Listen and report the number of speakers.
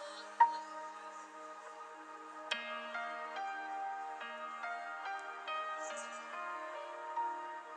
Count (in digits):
0